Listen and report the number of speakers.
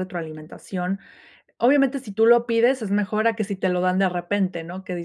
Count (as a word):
one